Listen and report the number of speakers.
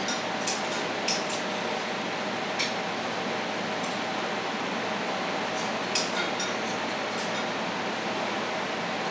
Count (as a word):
zero